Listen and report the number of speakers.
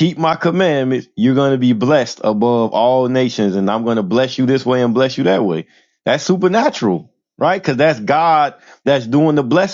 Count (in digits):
1